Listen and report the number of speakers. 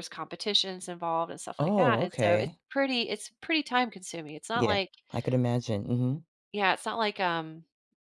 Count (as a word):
two